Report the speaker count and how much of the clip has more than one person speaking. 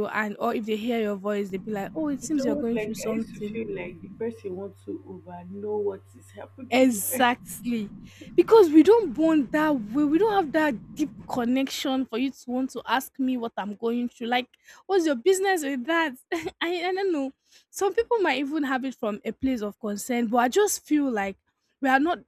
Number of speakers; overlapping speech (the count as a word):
two, about 9%